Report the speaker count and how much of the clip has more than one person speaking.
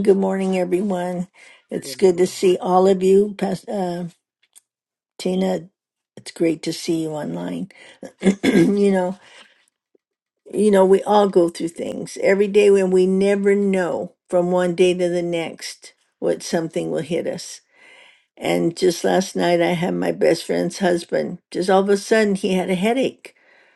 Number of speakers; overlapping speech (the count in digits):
1, no overlap